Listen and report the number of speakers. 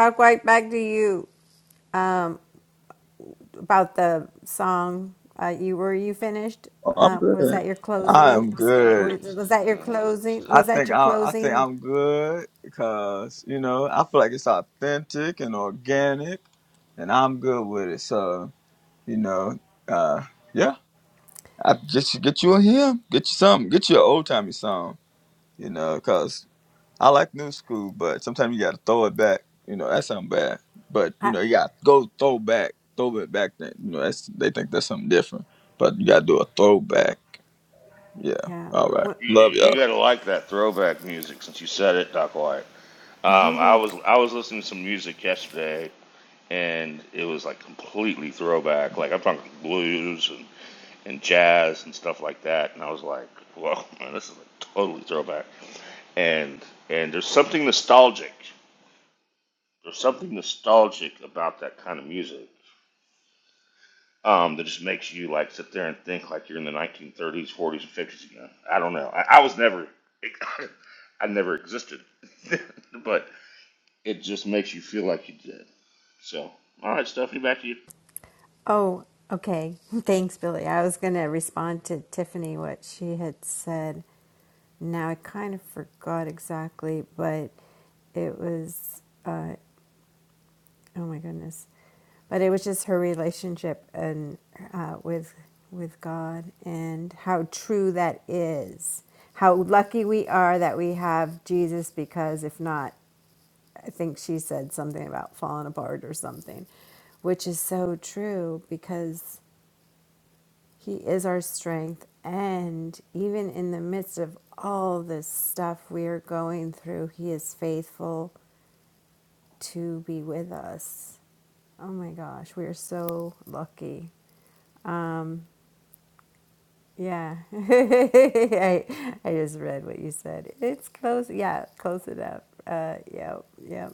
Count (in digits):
3